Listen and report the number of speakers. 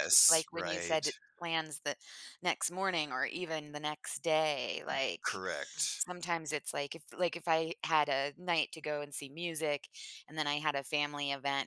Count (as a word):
two